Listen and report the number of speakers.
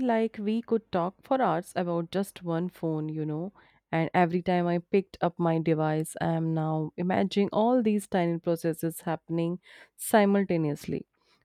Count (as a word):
one